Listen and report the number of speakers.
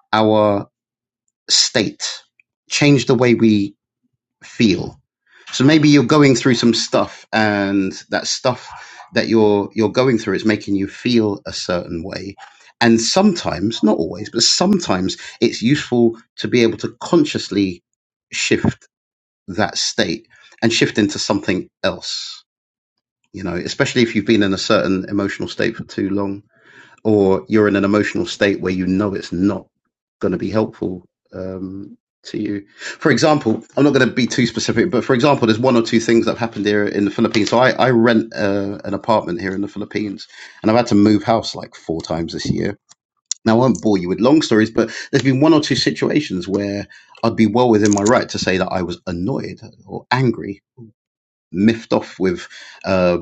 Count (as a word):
one